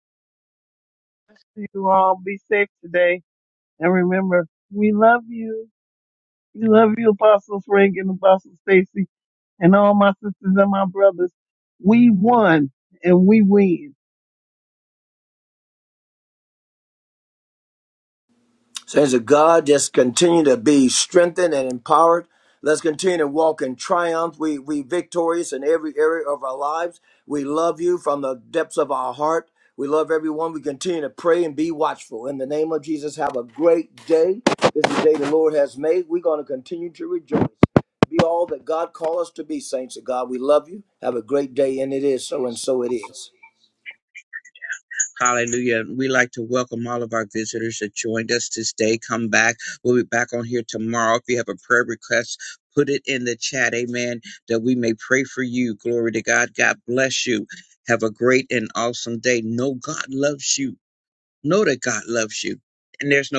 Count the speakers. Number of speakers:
3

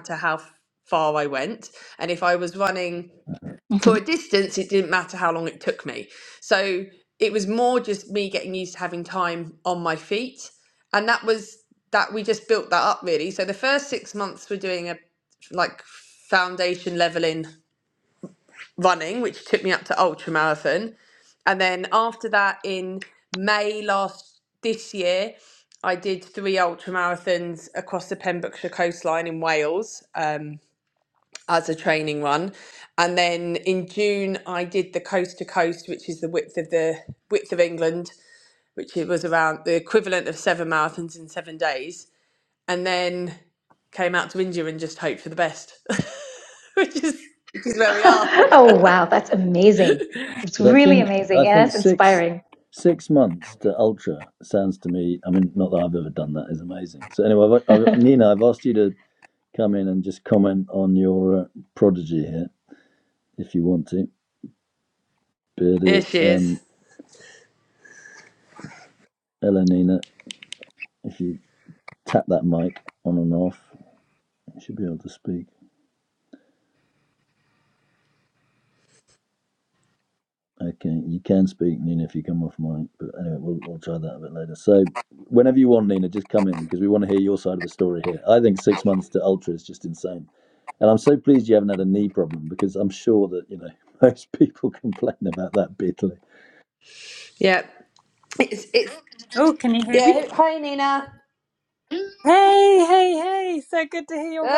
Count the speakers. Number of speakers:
4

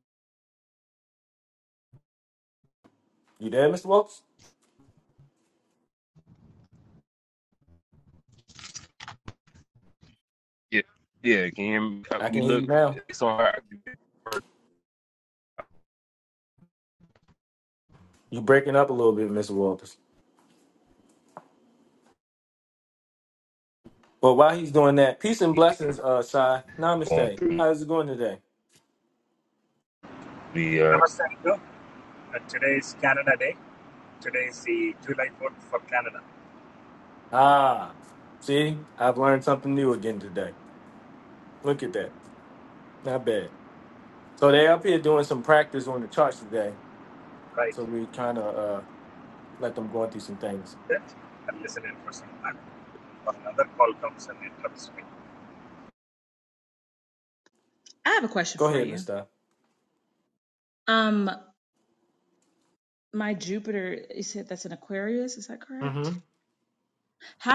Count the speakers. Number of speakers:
4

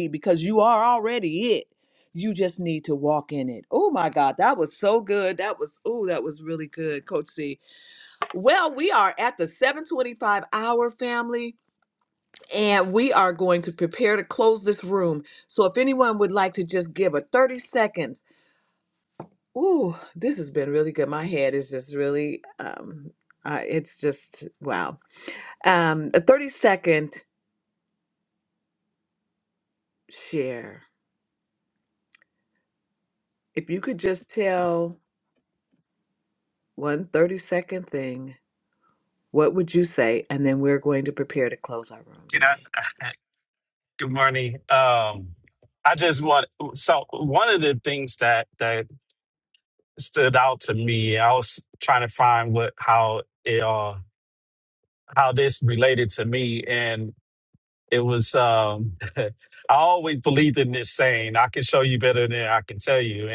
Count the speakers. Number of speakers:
2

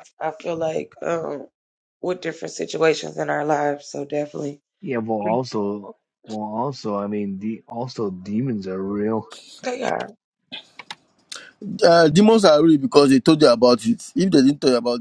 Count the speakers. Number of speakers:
3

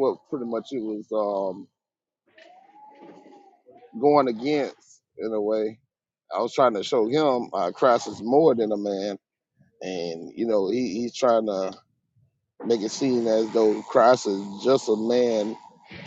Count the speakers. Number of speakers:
1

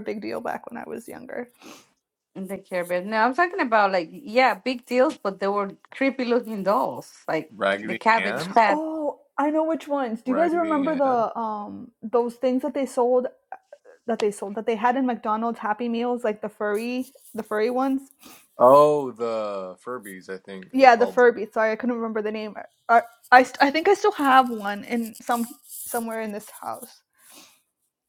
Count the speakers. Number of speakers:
3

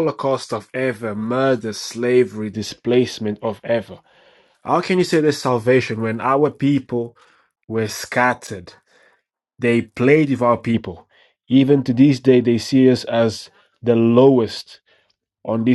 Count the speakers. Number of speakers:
1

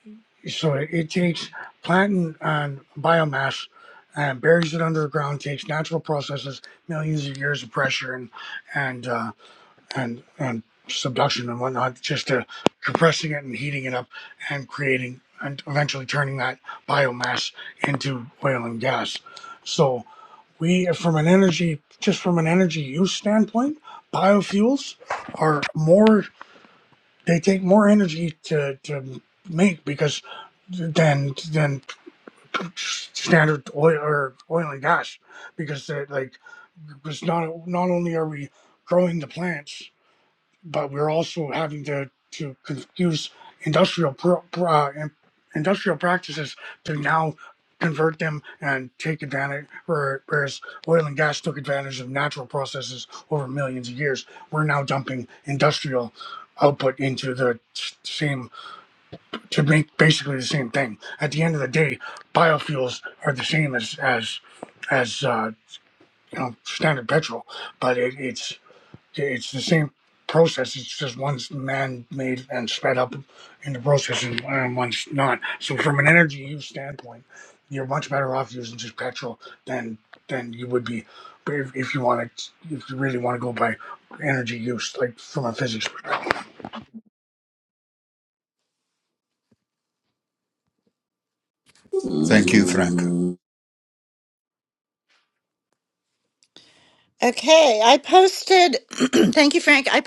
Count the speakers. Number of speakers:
3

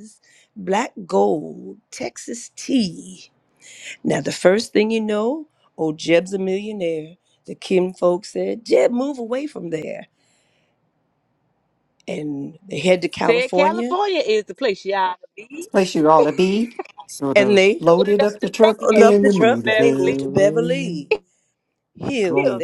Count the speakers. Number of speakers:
3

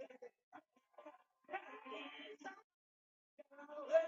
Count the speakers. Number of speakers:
0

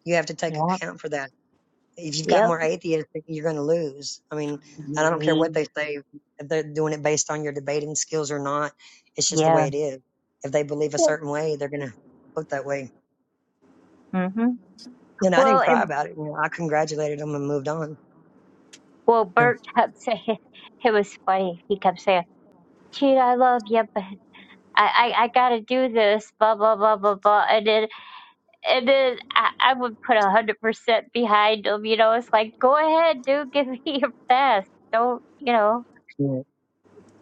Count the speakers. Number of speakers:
2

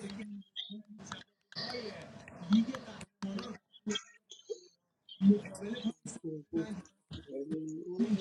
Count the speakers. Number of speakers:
0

